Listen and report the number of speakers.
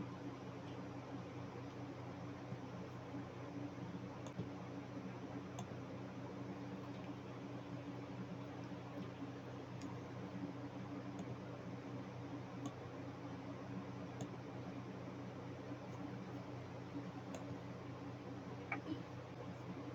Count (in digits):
0